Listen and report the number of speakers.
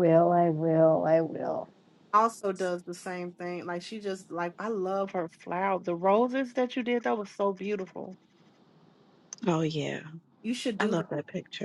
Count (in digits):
3